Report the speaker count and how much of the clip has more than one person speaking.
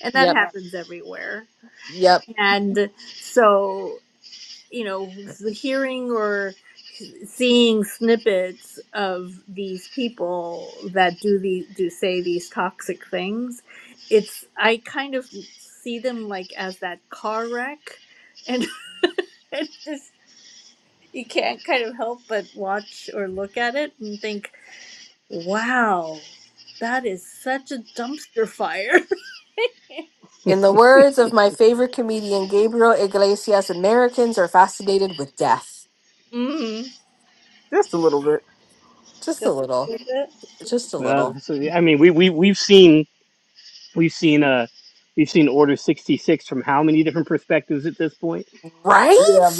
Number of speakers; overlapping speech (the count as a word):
four, about 2%